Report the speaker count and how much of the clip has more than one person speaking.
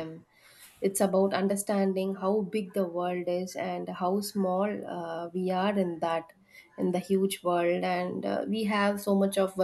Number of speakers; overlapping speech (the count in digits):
1, no overlap